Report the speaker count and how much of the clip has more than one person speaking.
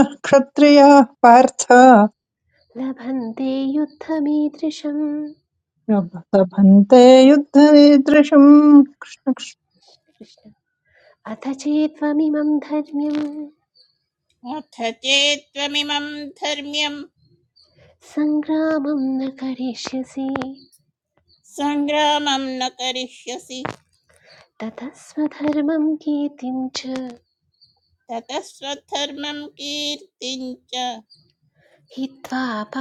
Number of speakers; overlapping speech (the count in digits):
3, no overlap